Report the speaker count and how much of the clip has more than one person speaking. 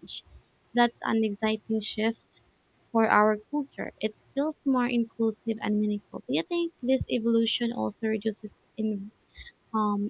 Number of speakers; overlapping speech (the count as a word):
one, no overlap